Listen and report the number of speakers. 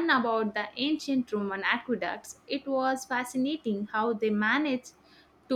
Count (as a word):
one